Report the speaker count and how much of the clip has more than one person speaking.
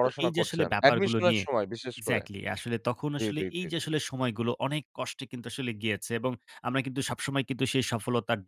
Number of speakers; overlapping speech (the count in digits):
2, about 28%